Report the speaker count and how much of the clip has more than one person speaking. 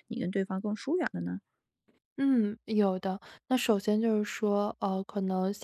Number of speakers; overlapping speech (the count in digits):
2, no overlap